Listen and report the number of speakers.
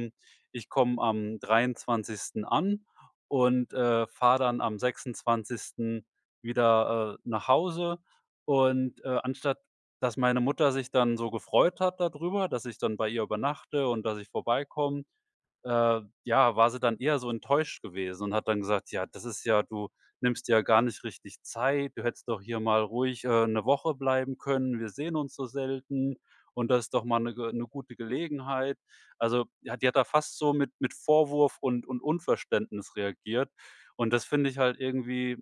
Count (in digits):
1